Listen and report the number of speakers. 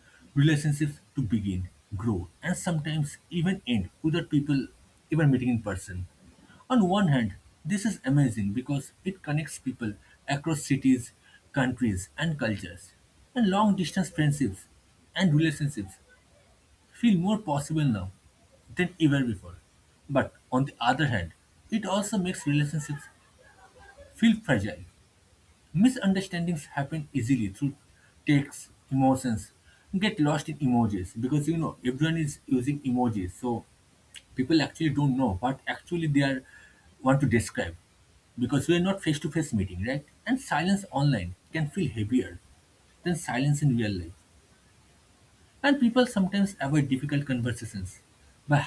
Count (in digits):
1